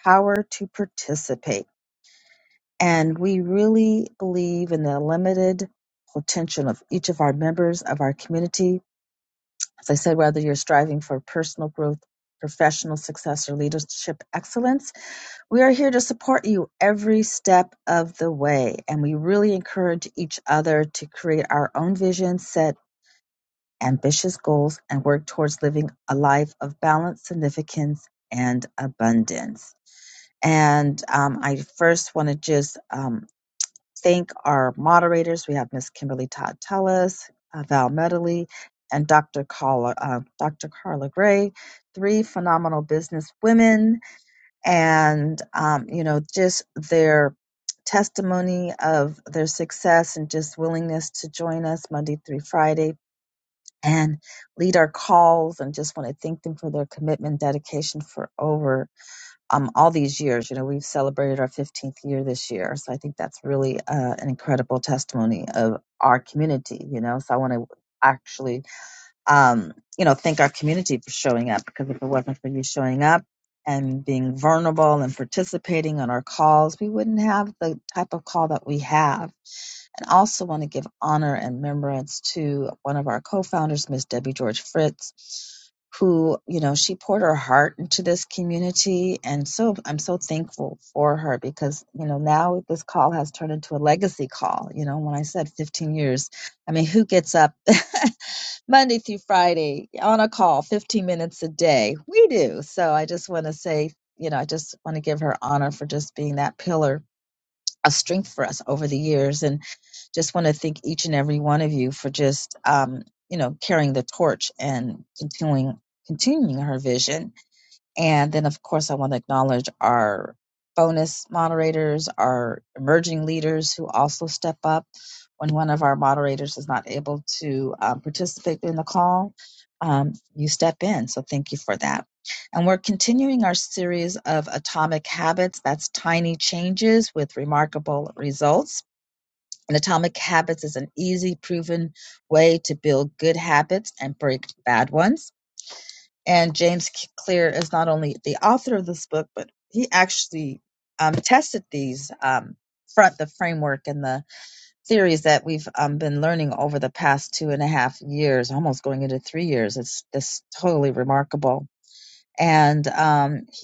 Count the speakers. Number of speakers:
1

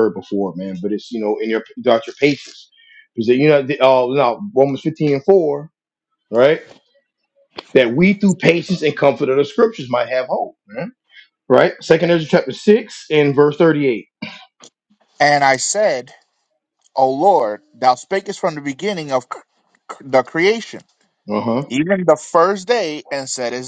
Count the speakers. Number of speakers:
2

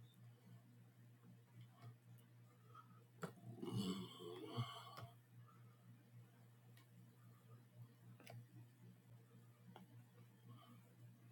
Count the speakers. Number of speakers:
0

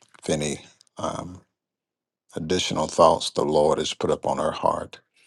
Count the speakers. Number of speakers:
1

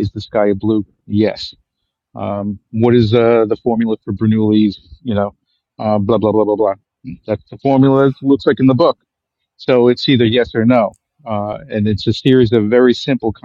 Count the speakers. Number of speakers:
1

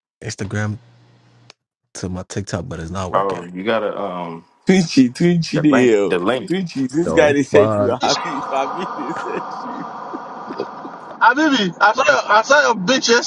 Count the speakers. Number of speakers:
4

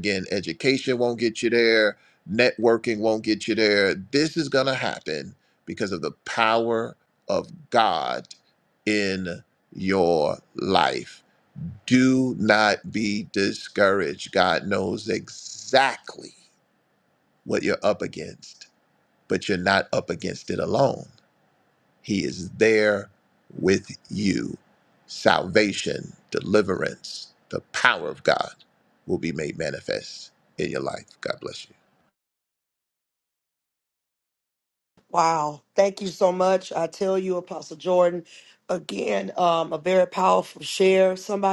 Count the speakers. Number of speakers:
2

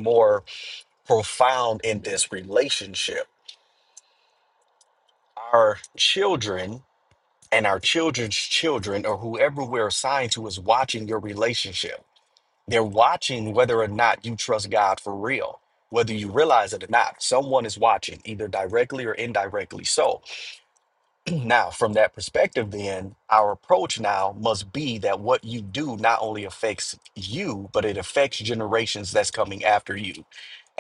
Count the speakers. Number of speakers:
1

